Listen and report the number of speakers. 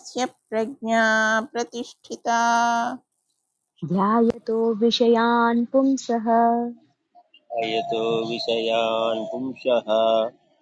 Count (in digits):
3